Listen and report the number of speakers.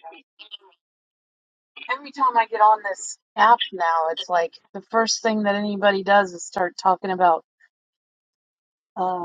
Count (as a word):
one